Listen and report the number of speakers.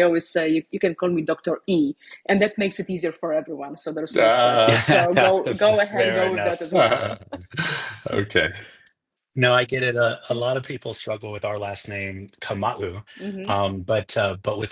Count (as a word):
three